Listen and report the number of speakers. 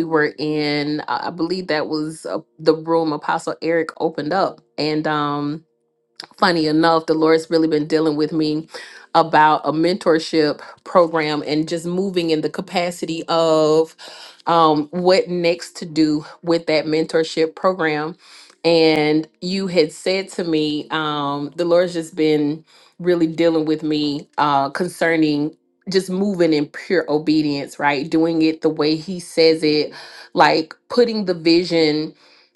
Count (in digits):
1